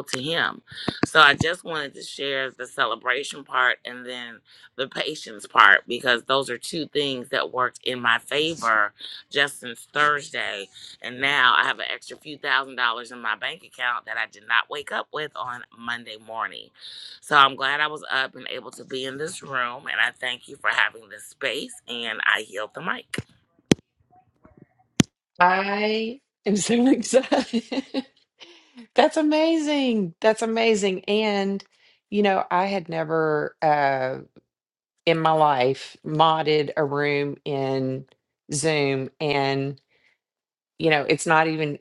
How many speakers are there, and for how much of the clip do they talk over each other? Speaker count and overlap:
2, no overlap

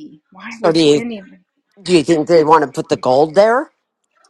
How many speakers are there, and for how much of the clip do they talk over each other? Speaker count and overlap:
2, about 9%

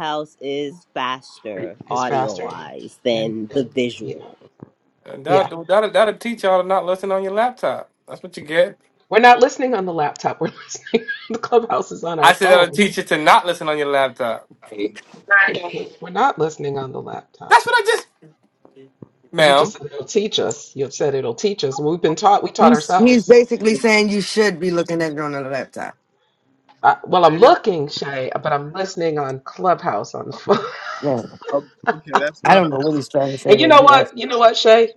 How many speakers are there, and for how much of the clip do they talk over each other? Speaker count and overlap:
5, about 13%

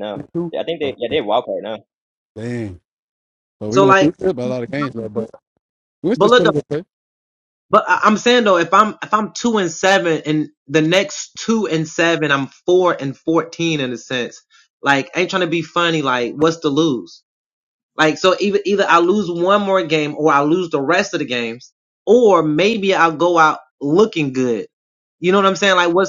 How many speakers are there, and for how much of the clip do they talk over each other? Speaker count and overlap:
3, about 4%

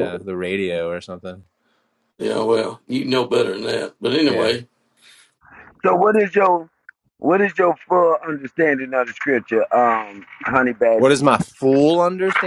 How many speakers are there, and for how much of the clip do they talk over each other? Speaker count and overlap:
3, about 2%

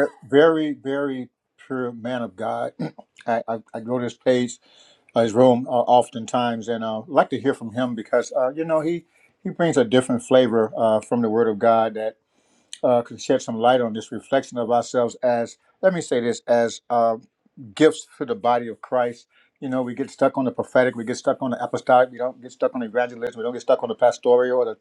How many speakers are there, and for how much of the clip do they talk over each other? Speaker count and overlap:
1, no overlap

